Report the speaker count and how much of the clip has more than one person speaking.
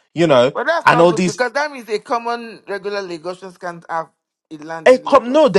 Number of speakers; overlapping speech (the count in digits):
2, about 24%